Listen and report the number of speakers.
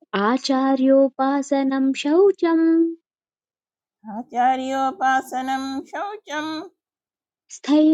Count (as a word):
two